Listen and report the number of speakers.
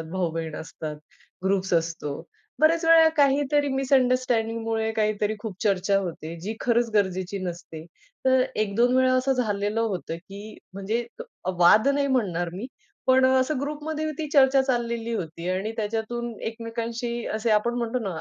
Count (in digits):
1